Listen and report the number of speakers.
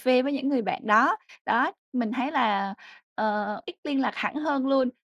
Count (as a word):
one